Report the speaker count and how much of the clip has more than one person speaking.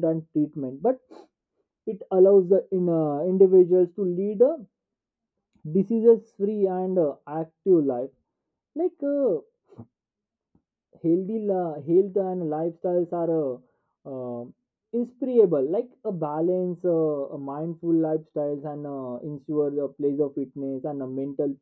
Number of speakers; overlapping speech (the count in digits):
1, no overlap